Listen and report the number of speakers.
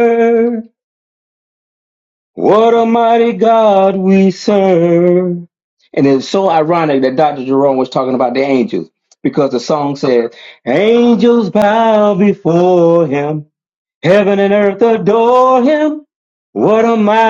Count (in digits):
1